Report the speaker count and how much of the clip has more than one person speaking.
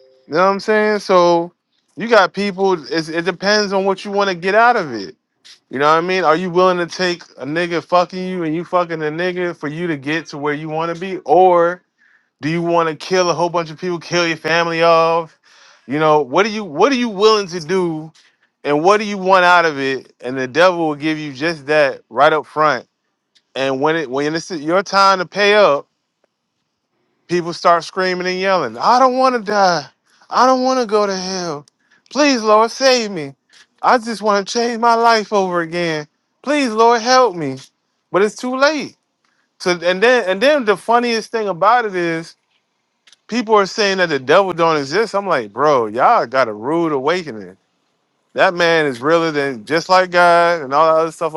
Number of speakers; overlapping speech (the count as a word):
one, no overlap